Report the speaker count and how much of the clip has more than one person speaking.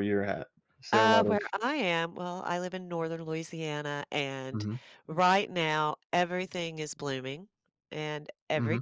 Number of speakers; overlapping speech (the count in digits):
2, about 10%